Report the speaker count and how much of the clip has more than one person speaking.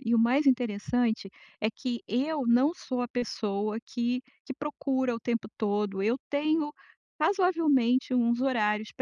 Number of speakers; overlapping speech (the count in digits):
1, no overlap